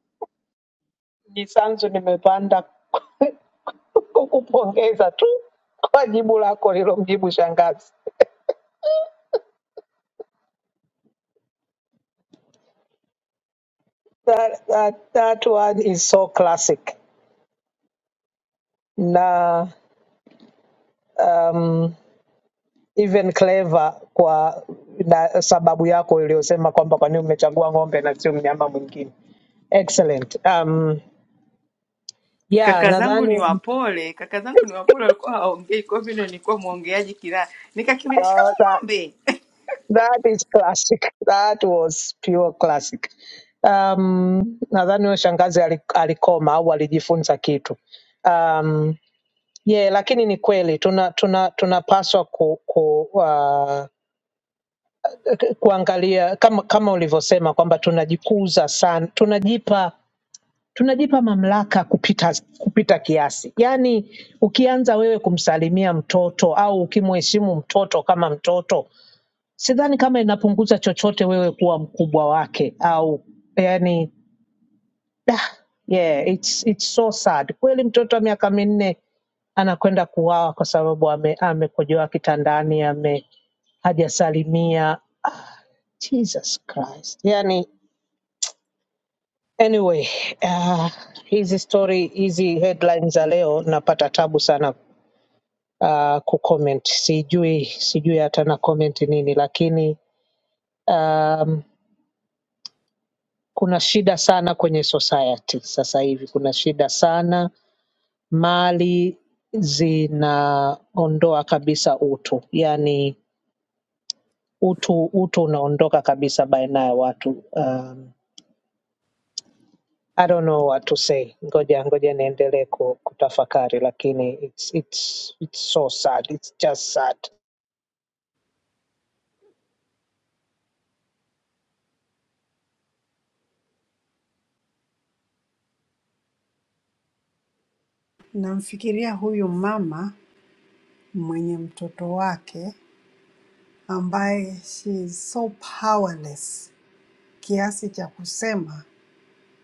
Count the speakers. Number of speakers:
3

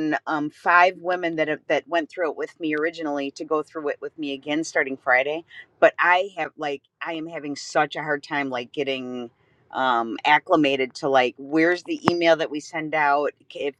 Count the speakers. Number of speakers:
1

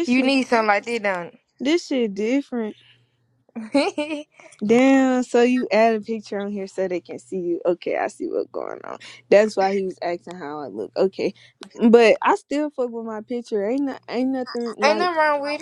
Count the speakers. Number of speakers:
2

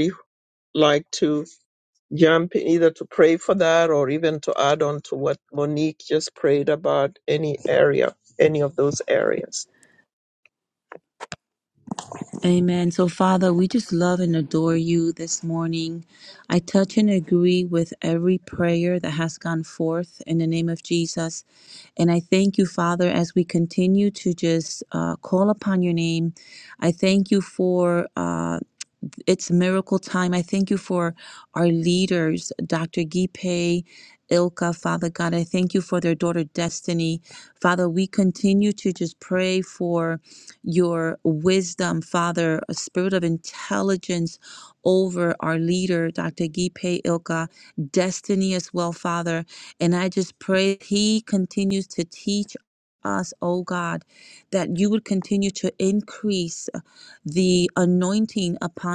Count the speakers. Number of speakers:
2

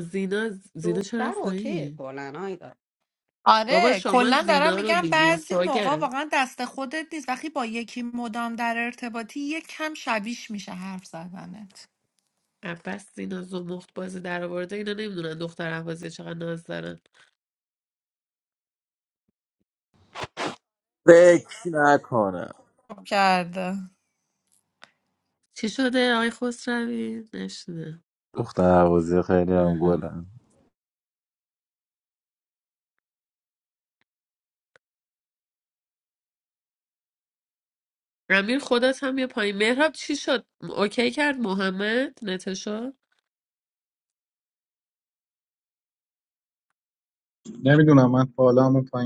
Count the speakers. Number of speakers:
5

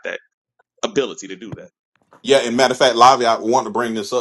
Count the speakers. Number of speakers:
2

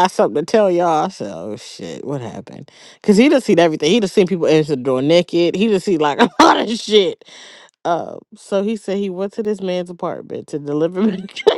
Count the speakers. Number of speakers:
1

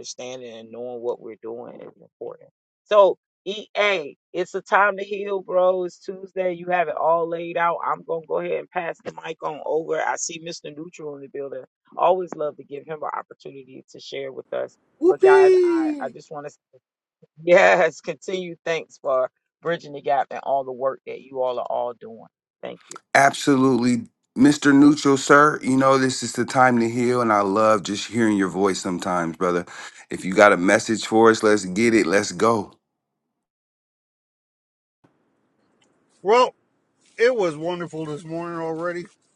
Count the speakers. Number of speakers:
3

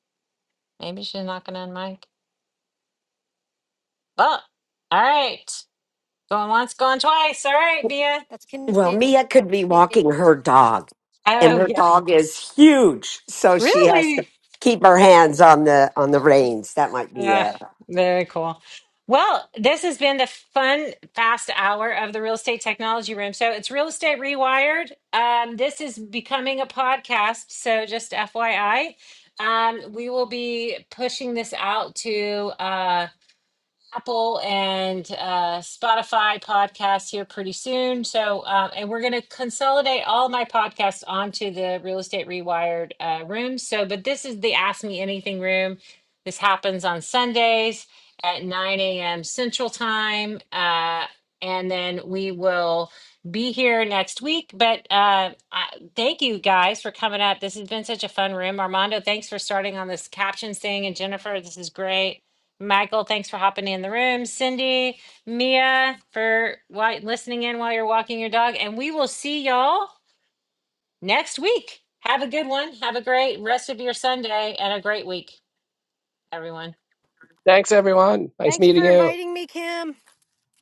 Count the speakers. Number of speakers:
4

